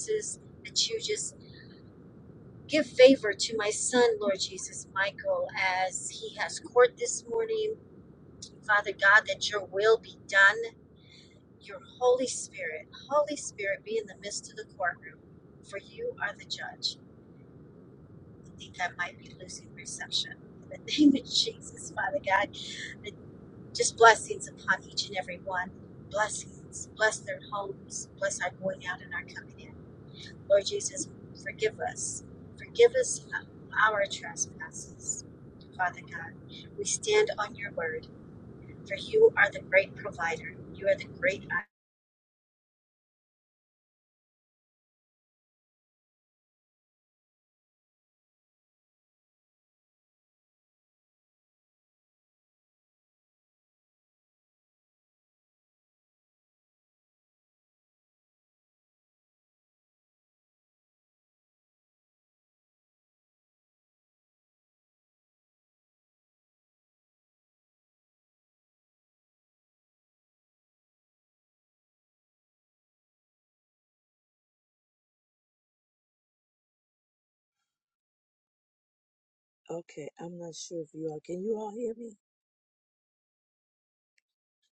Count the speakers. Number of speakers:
two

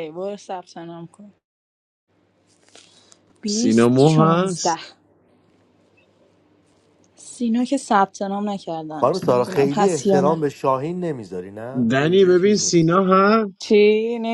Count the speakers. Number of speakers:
three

